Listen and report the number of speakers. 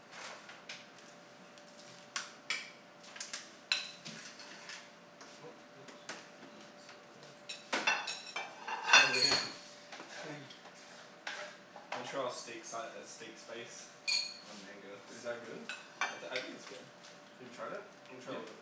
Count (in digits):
2